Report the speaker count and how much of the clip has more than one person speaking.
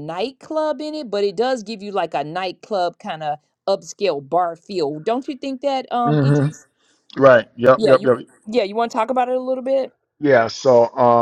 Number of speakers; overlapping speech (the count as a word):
two, about 7%